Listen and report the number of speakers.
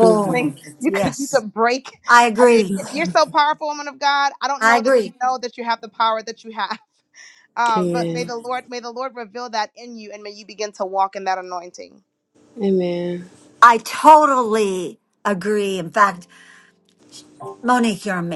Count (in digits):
3